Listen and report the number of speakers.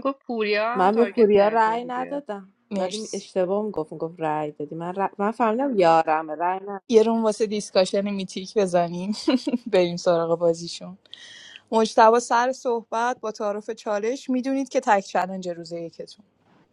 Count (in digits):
3